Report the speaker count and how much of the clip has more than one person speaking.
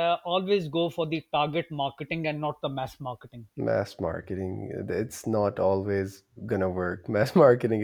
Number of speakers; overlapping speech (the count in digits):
2, no overlap